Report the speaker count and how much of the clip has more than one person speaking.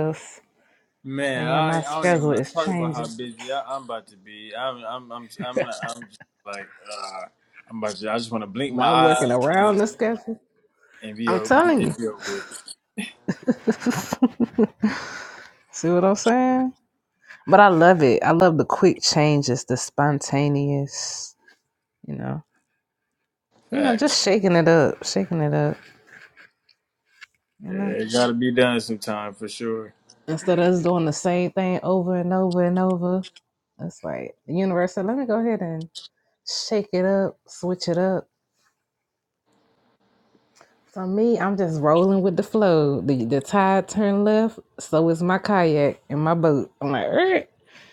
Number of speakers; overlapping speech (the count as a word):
two, about 9%